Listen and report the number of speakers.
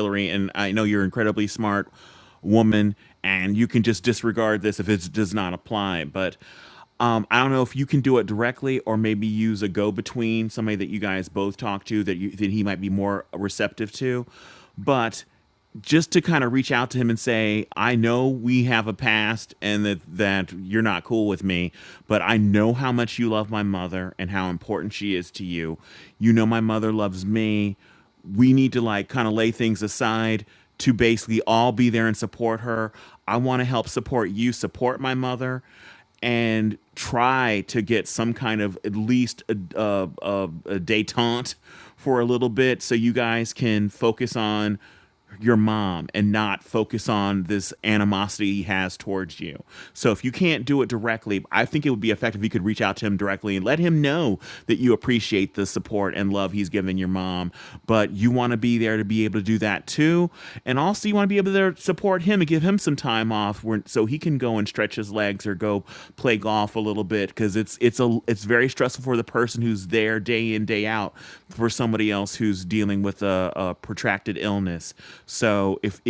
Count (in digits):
1